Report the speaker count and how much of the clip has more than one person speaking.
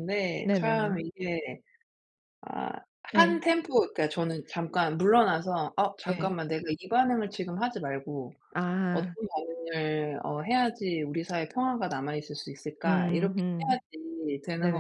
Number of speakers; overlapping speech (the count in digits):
2, about 15%